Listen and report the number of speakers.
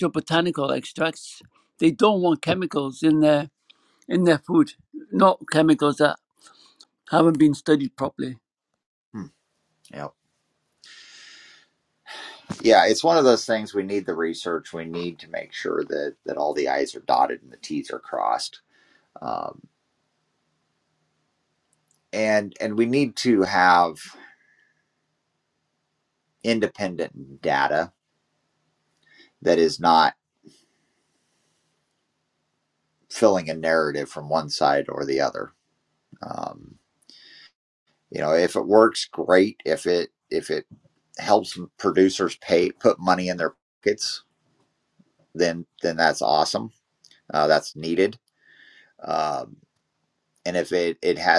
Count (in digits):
2